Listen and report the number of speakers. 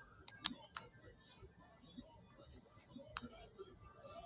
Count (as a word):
zero